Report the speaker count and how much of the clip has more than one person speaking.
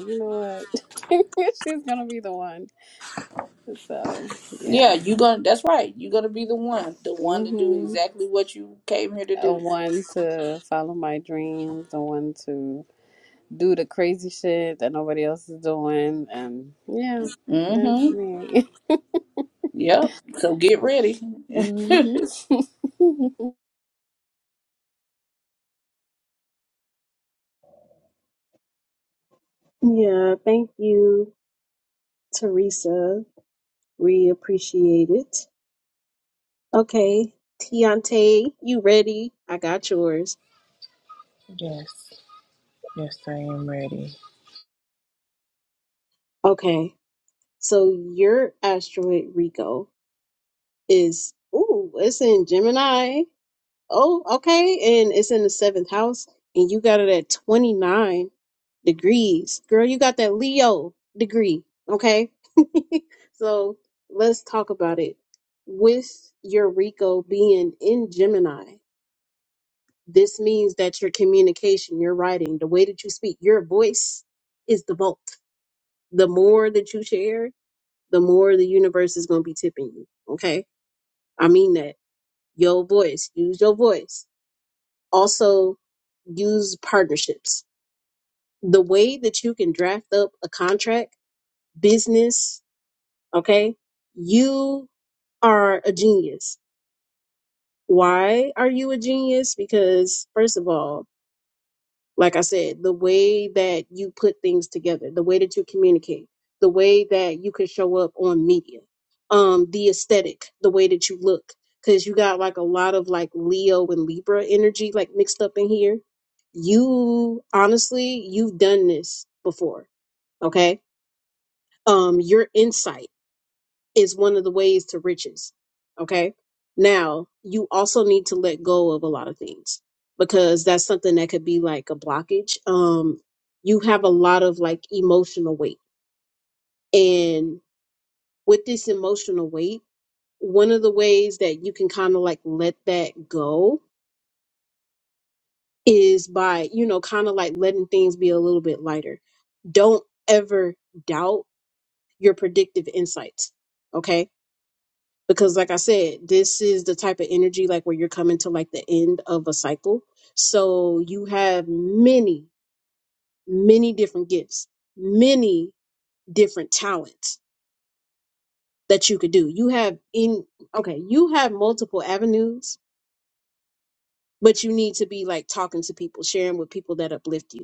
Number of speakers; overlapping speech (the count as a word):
four, about 1%